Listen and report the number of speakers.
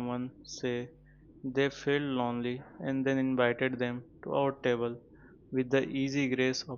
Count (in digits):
1